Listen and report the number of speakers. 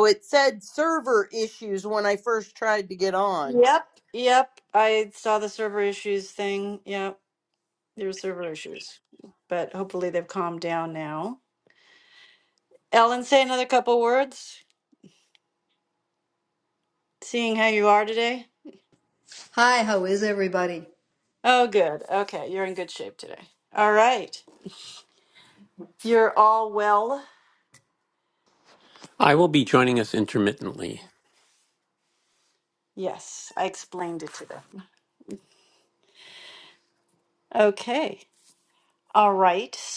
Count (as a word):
four